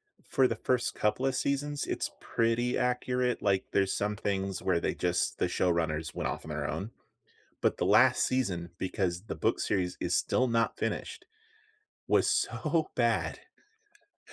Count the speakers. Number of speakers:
one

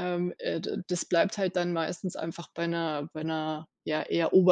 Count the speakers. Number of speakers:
one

